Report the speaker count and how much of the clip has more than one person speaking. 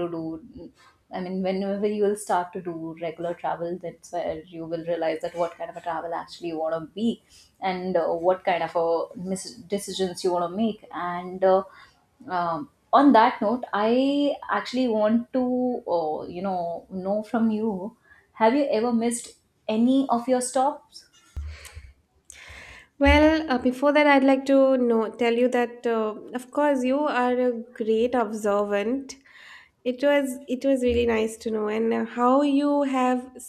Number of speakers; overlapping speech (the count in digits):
2, no overlap